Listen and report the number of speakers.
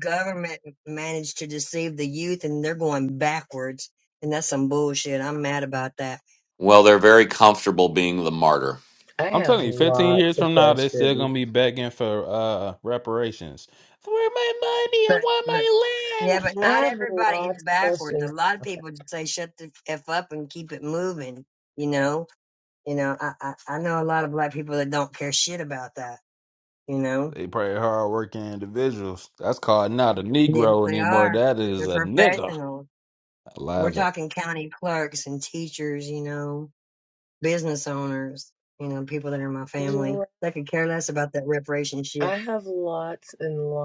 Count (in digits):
4